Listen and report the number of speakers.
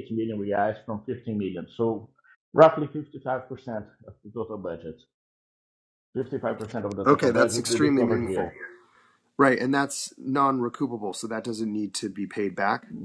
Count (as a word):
two